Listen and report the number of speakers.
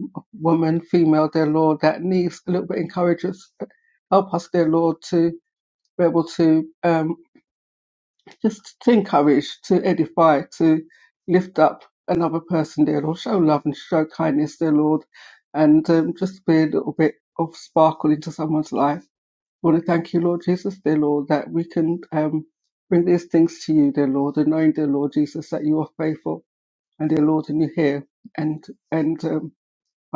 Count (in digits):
1